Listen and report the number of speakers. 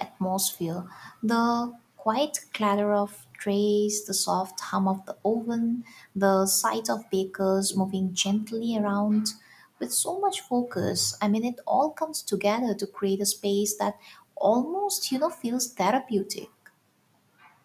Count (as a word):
one